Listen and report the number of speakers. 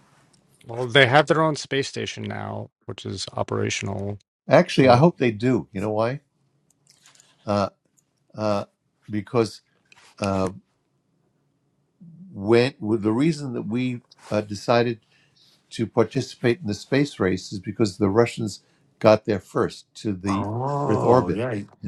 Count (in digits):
3